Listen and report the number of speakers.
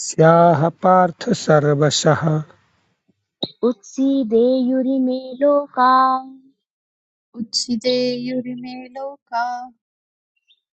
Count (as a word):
three